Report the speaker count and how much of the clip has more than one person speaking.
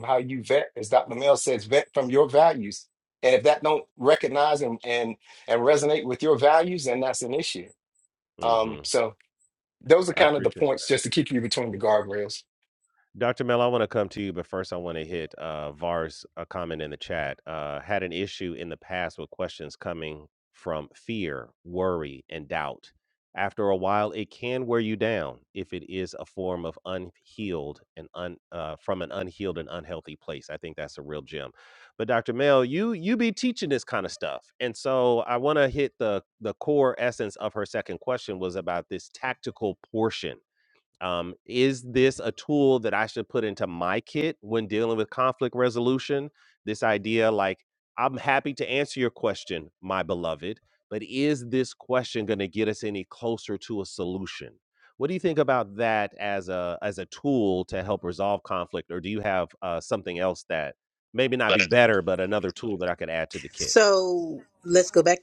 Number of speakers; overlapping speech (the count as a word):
three, about 1%